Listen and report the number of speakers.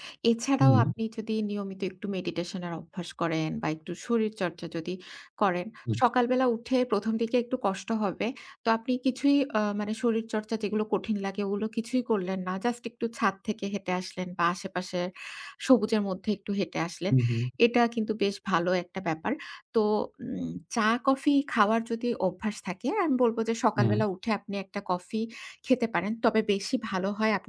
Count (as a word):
two